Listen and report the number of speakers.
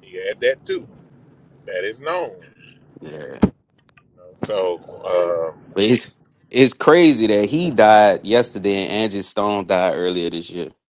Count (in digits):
2